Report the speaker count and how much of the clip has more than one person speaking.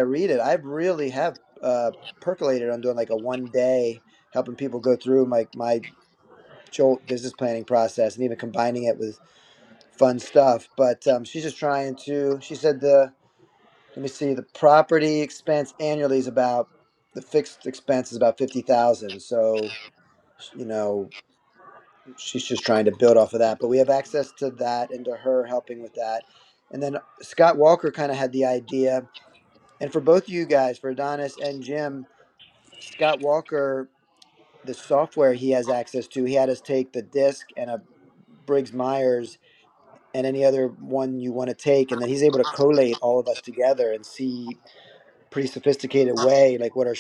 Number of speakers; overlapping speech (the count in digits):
1, no overlap